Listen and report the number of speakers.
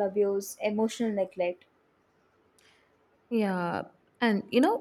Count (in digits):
2